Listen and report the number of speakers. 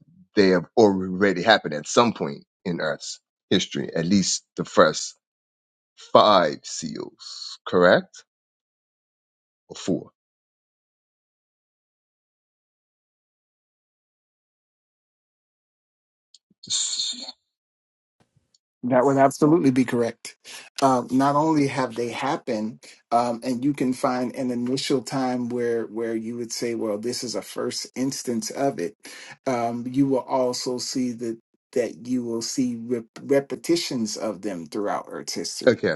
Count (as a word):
two